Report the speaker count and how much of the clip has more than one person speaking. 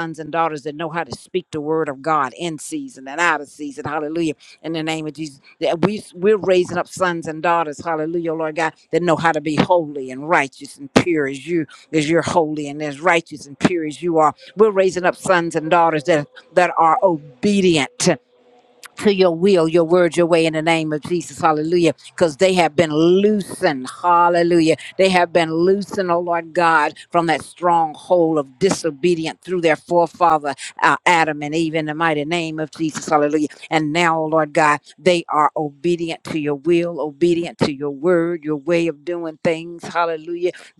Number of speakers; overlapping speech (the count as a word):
one, no overlap